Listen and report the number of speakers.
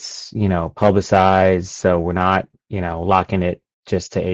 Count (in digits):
1